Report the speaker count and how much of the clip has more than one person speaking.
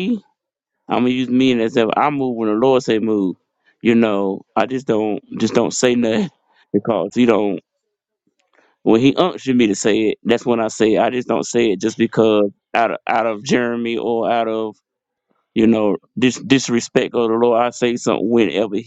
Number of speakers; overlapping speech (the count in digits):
1, no overlap